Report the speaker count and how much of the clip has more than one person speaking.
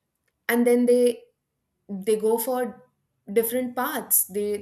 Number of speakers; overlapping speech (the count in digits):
1, no overlap